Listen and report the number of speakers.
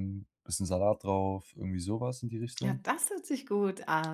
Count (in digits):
2